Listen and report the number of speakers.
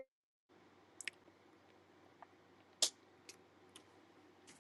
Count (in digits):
0